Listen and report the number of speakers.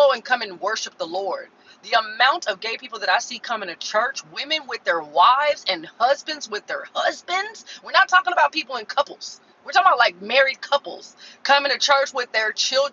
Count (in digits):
1